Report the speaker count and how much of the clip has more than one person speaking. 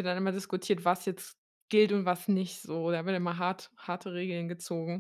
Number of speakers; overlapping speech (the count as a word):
one, no overlap